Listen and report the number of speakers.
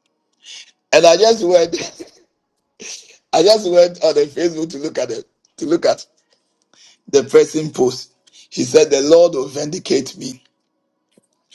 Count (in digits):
1